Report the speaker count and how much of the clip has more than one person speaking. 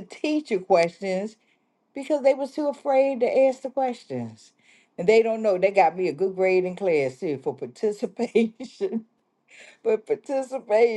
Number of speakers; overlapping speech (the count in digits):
1, no overlap